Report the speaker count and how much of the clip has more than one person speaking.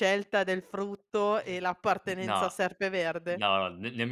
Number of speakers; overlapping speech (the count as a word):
two, about 13%